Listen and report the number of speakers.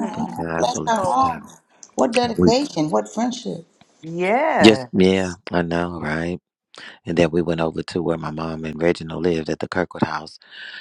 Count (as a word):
three